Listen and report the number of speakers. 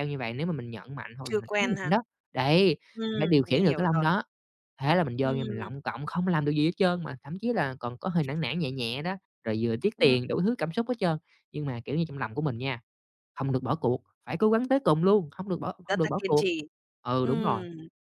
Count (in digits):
2